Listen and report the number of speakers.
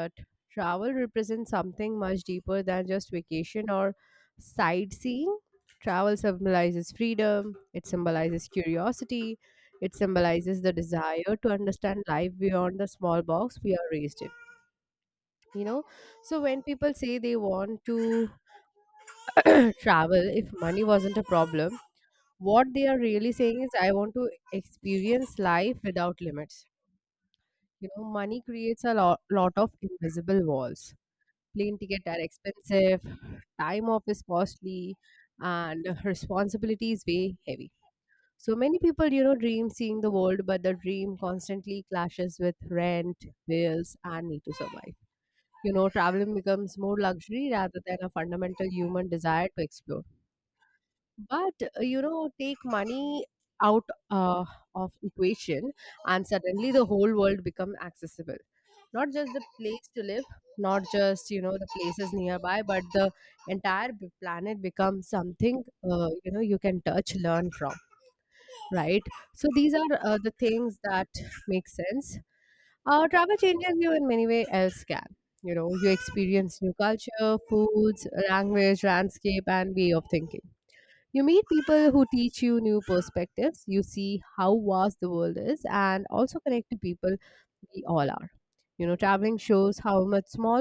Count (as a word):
one